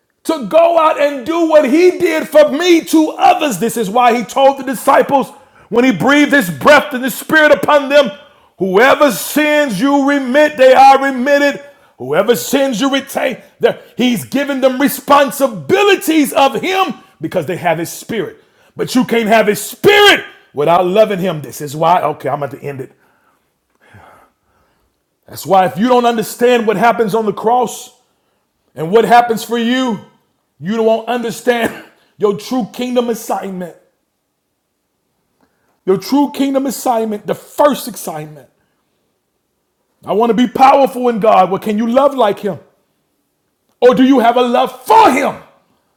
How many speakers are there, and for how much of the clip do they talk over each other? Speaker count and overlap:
one, no overlap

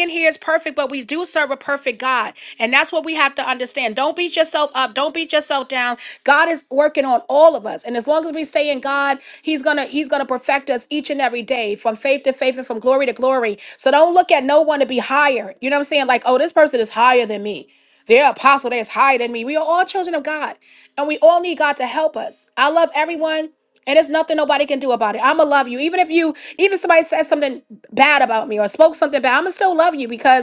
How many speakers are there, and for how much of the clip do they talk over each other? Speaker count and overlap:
one, no overlap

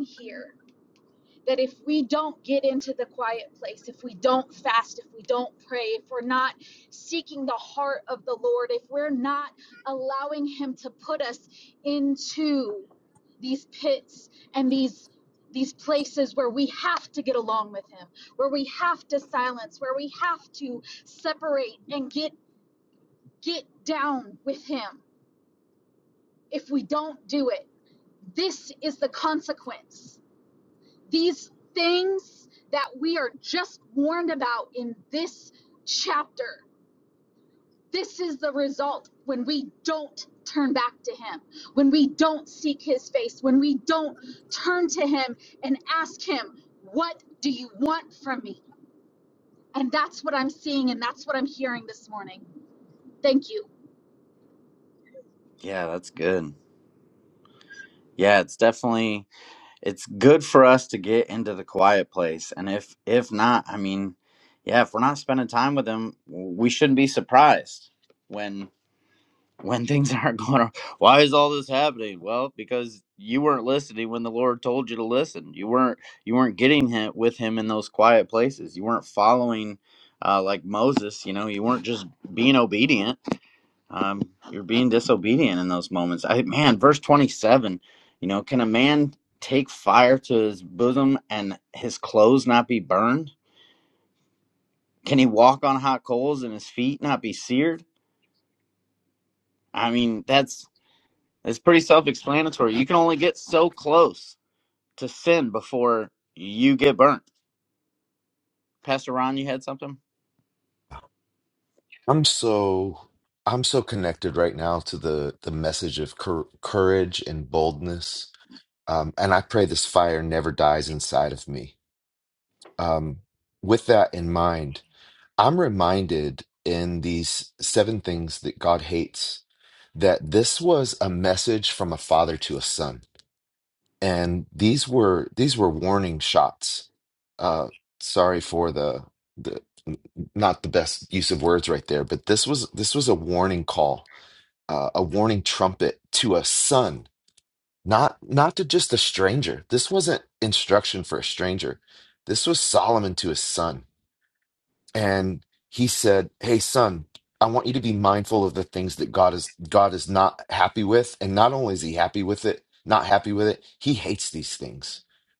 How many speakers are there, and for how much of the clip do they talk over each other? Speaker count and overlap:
three, no overlap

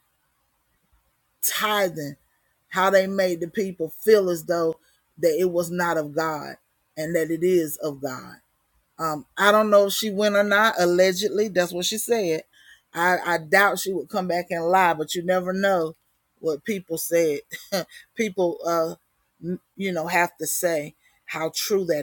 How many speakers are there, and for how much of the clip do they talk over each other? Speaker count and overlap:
one, no overlap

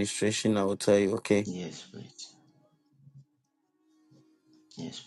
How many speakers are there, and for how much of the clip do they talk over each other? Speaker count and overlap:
two, no overlap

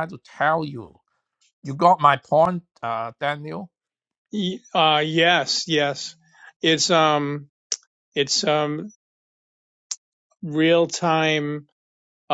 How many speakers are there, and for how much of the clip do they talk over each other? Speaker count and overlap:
two, no overlap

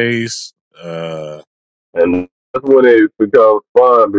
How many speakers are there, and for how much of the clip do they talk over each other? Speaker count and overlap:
two, no overlap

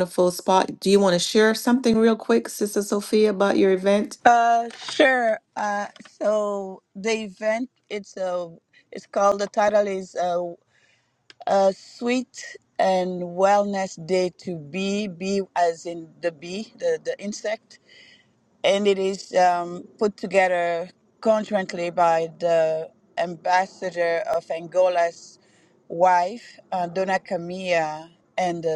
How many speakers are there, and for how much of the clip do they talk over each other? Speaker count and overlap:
two, no overlap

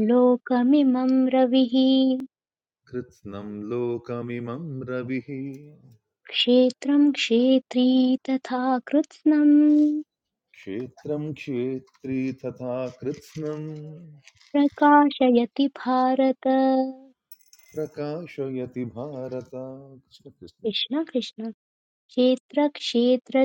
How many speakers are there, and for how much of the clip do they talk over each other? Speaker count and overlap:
two, no overlap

